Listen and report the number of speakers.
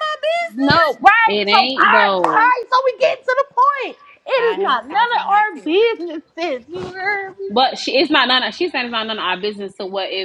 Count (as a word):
three